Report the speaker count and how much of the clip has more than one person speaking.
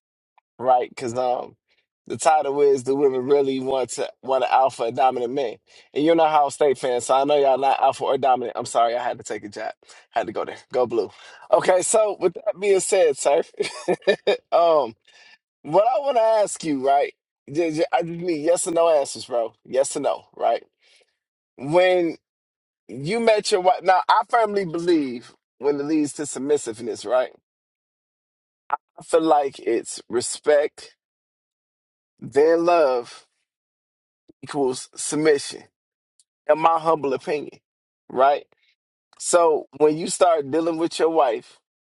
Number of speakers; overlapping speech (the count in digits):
1, no overlap